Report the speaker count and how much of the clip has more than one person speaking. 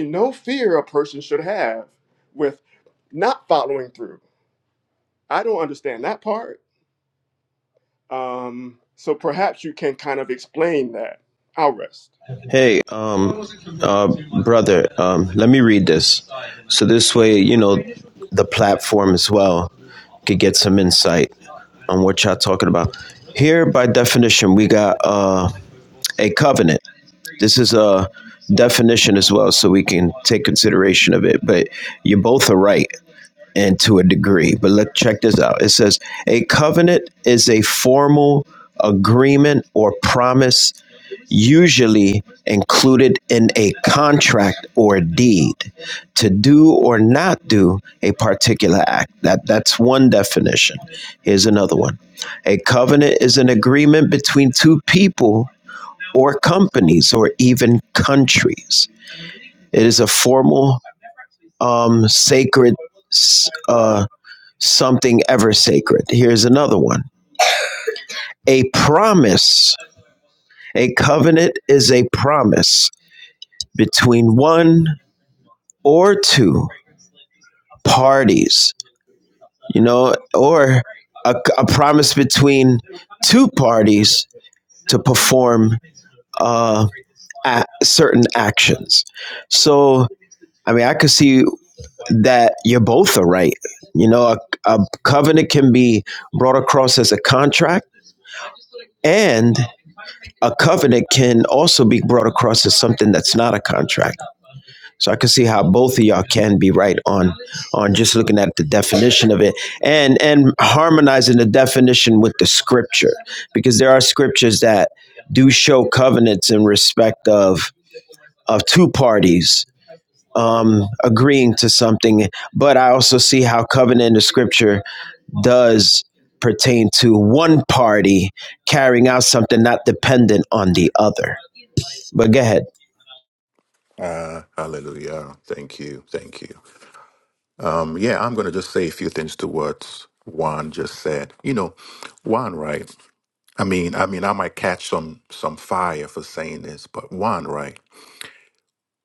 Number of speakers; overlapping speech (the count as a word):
three, no overlap